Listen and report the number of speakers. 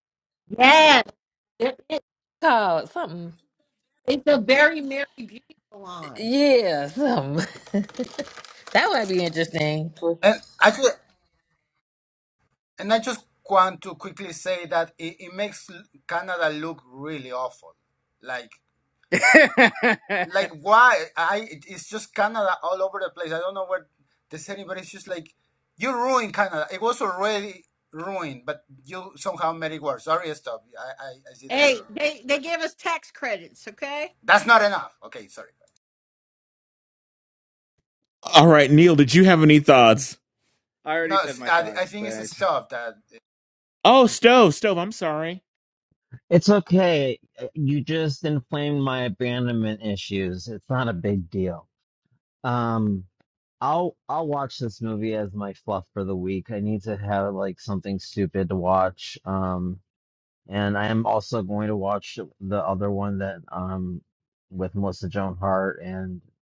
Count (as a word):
six